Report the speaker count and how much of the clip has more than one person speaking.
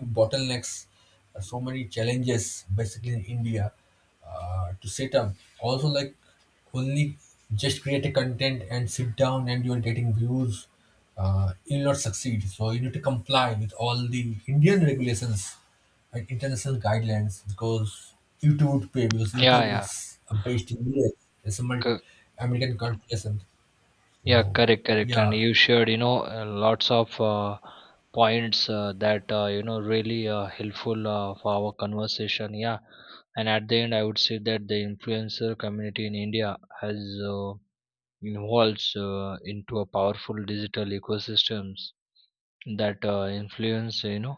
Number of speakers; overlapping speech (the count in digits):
2, about 3%